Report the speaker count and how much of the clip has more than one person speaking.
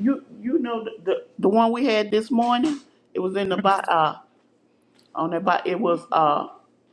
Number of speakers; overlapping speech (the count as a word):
one, no overlap